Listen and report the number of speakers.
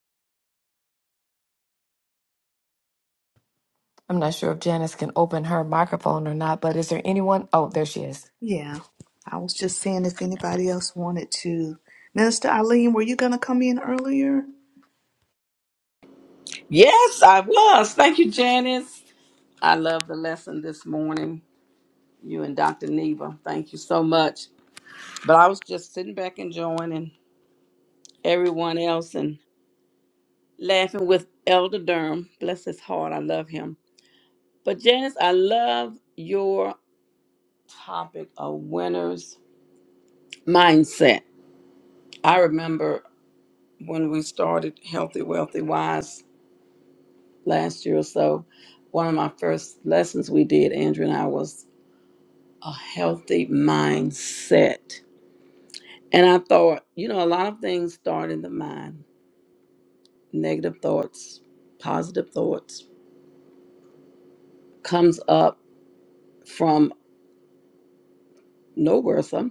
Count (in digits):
3